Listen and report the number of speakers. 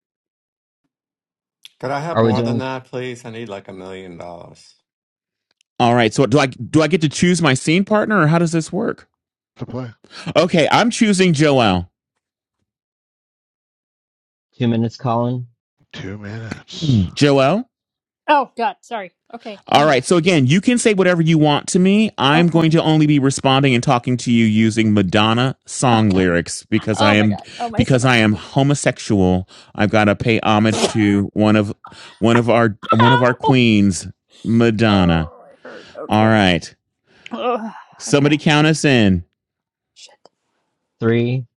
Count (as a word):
five